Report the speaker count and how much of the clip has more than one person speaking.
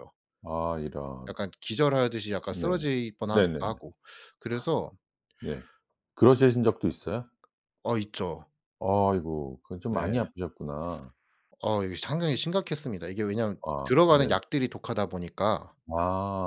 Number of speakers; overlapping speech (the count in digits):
2, about 10%